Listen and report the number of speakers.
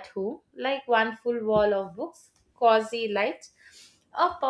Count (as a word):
one